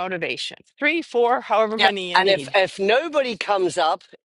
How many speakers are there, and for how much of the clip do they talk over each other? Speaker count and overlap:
two, about 18%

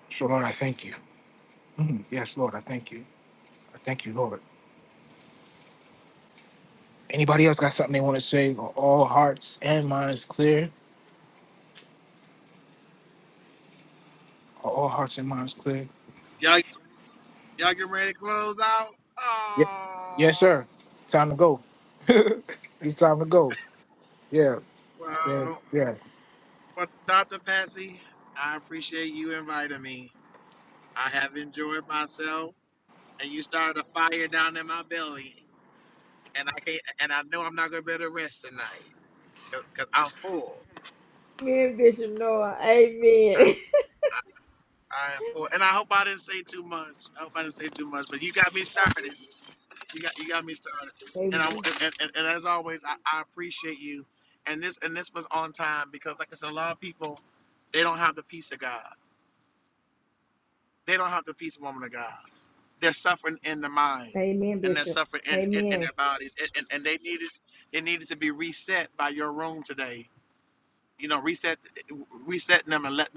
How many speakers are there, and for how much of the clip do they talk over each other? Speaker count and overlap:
three, about 2%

